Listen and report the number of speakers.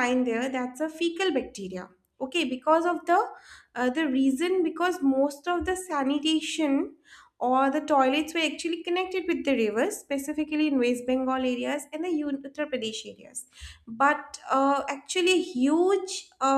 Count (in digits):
1